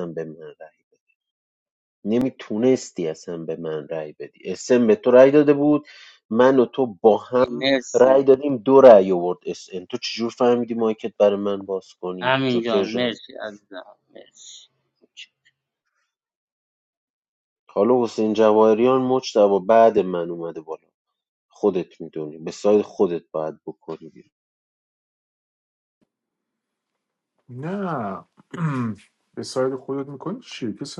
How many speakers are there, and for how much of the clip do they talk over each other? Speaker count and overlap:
3, about 5%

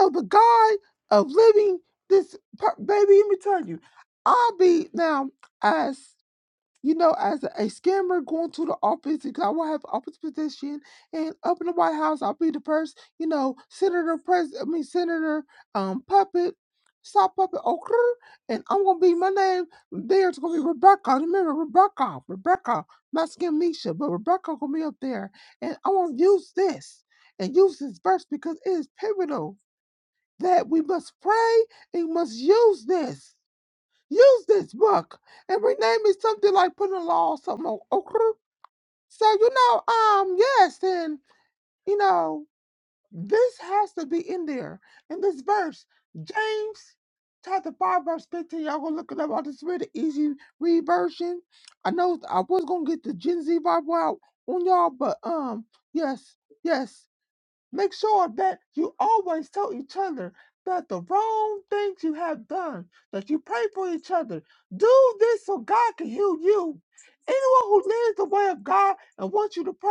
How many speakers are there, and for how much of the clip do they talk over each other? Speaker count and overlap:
1, no overlap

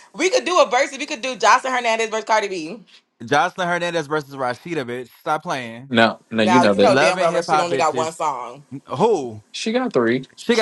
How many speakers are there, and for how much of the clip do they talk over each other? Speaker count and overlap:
3, about 15%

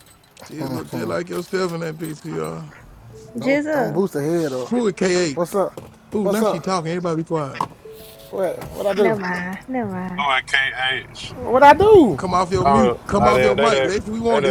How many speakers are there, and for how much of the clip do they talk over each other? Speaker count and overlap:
4, about 21%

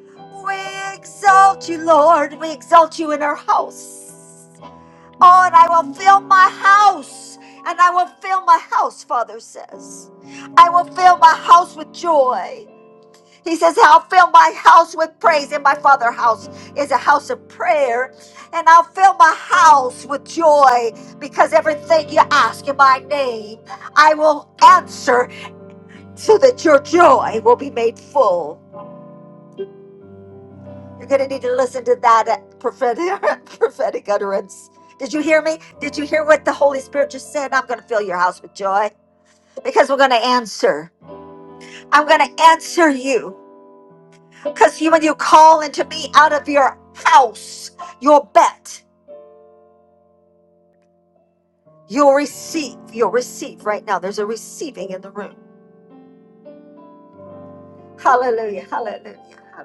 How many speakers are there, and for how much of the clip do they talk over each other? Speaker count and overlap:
1, no overlap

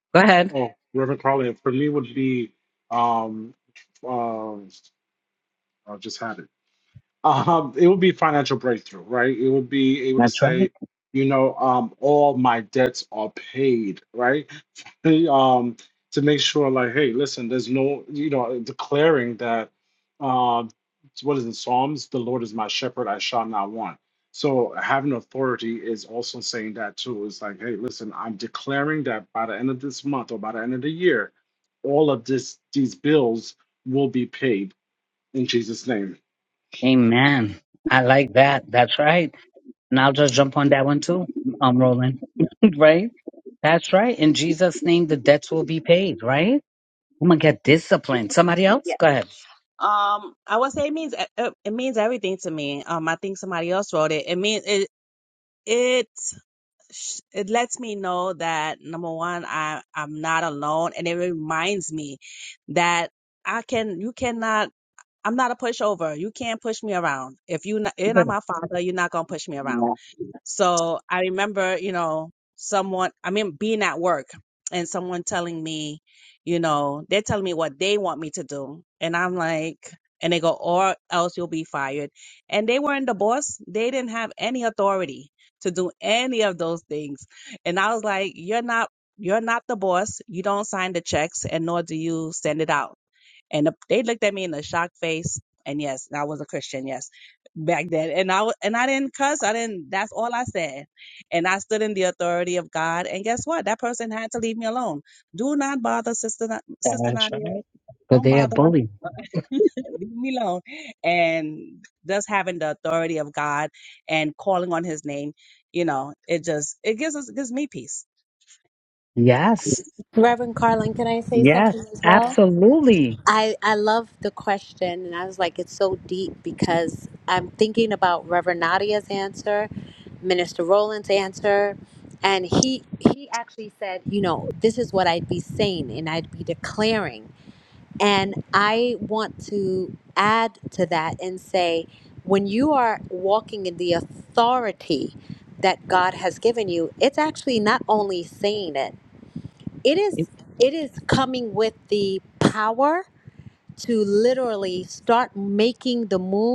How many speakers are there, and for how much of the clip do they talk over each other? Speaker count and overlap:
4, about 2%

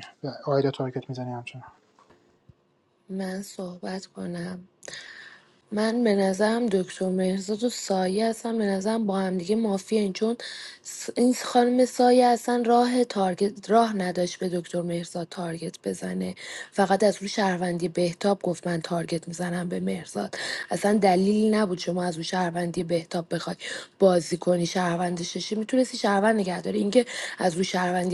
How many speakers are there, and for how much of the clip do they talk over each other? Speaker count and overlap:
2, no overlap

